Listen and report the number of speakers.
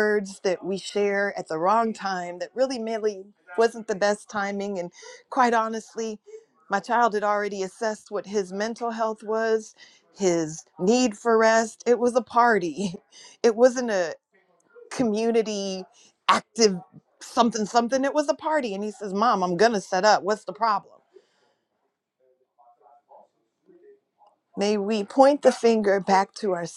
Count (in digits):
1